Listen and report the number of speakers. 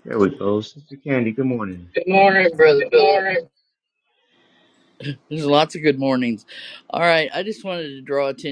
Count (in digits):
3